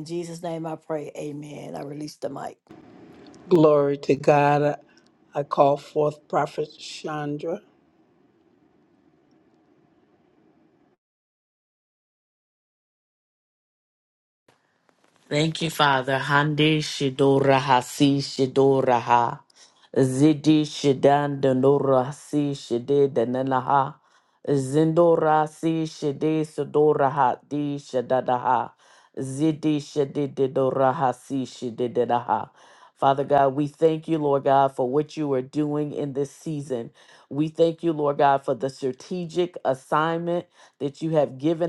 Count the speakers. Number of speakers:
3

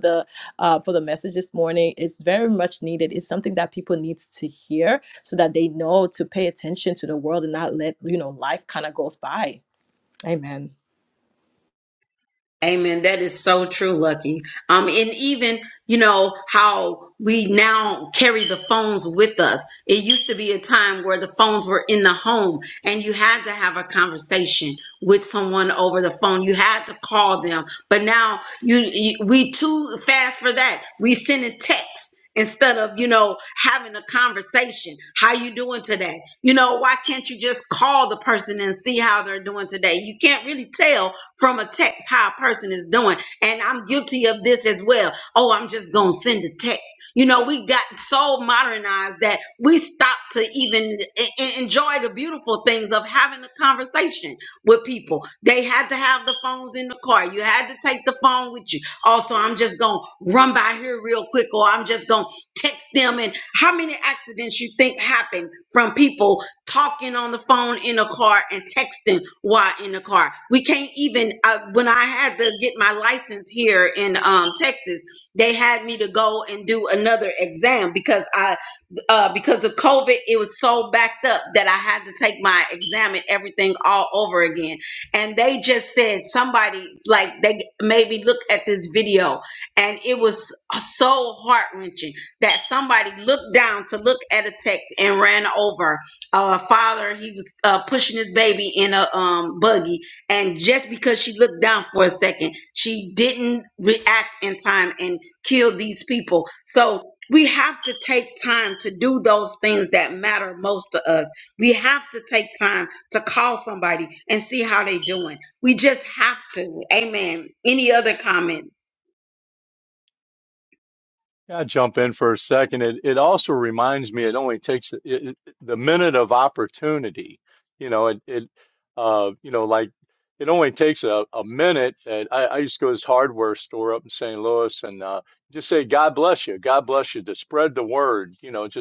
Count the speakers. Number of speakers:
3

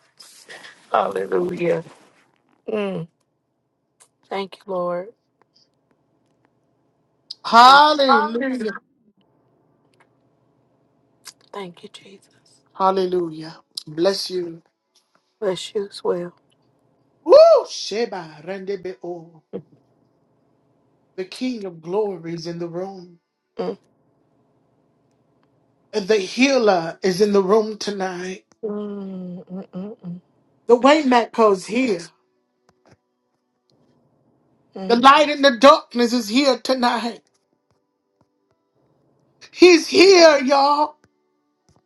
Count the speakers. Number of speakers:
2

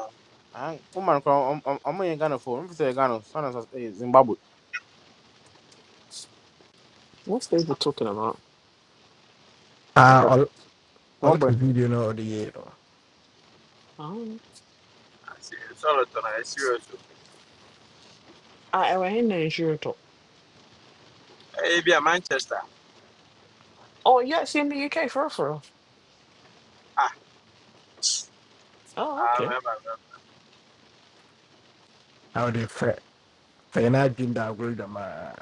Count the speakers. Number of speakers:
4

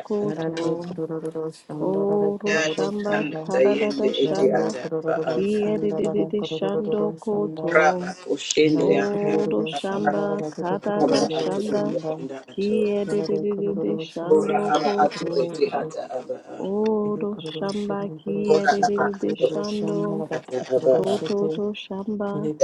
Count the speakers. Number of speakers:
3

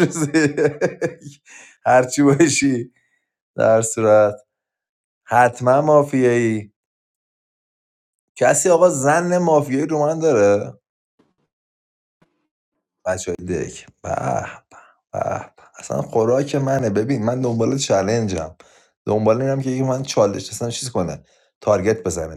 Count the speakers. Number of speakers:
1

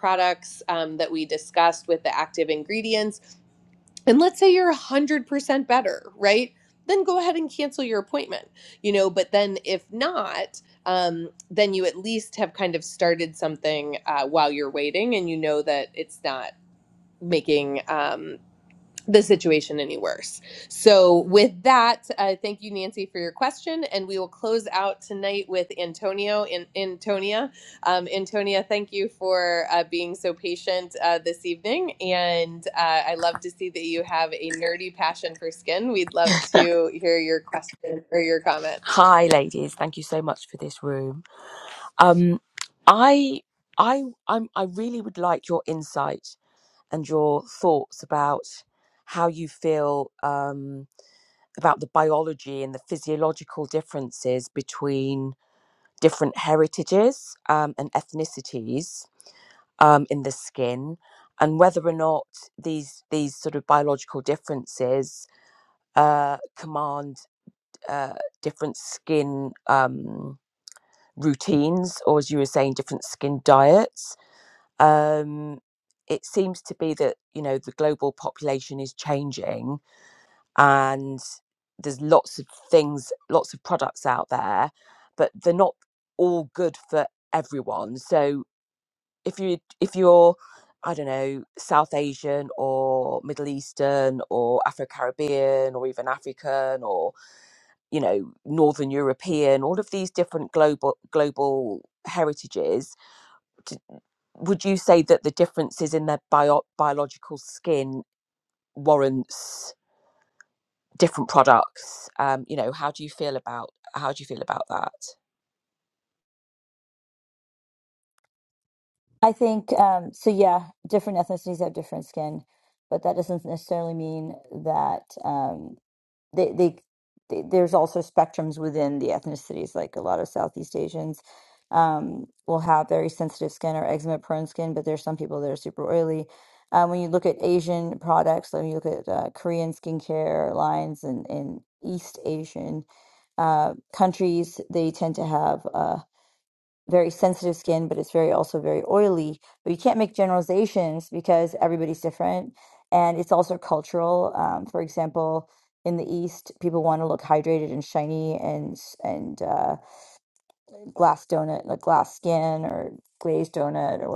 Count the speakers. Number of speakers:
3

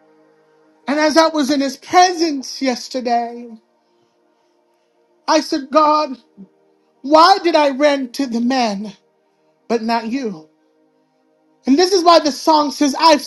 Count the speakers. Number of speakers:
1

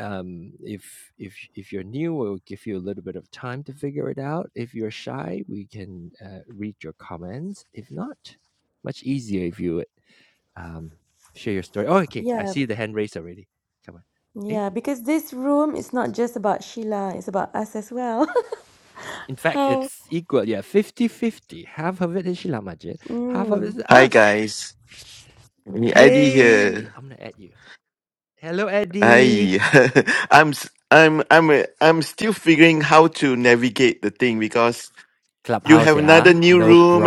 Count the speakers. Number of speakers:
3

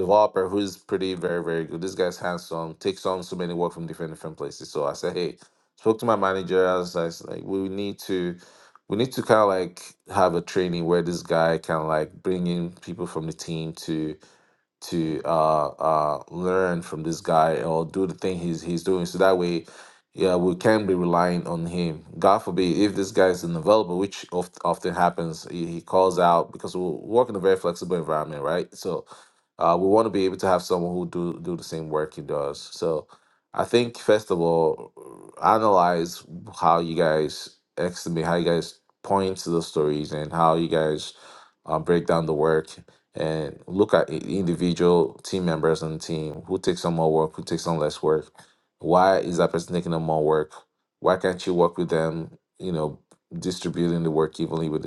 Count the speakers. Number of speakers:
1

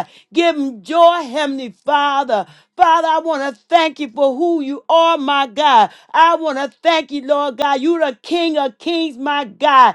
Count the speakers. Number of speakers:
1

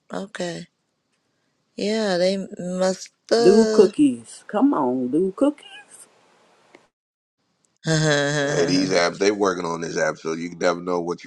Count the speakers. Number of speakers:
3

